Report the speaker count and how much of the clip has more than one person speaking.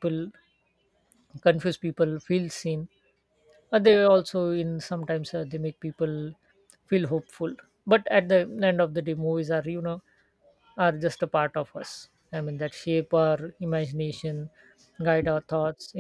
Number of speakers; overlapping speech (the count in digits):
1, no overlap